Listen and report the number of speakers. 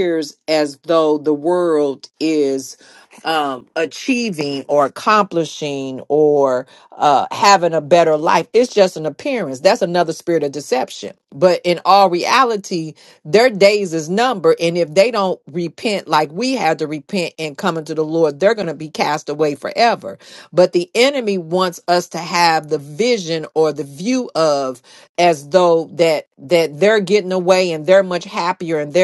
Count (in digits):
1